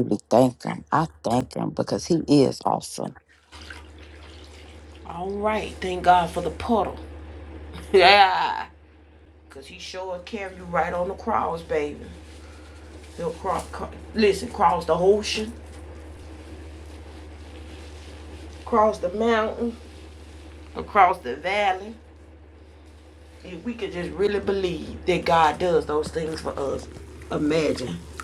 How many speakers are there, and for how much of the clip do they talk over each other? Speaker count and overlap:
two, no overlap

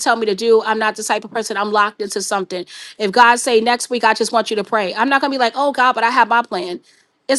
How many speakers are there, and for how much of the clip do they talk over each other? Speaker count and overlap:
one, no overlap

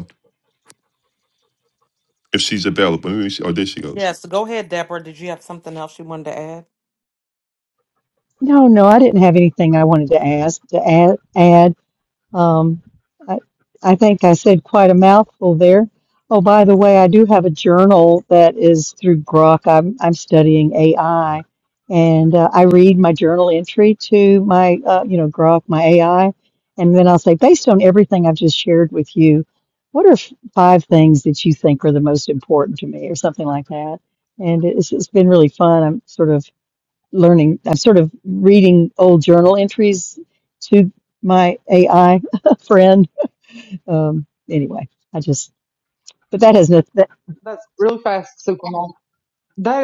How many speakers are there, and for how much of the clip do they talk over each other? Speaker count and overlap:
four, under 1%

